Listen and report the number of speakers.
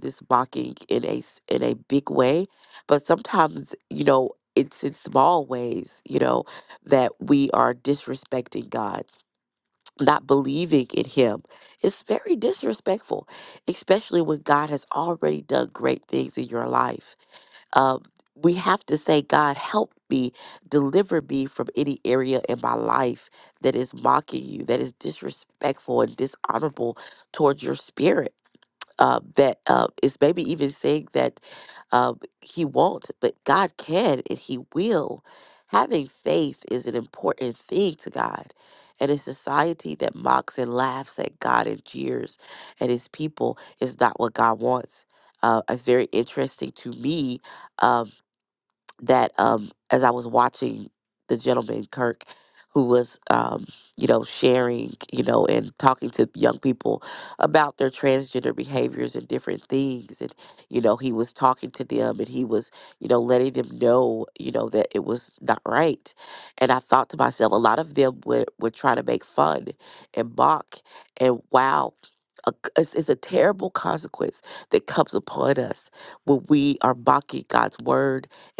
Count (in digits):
1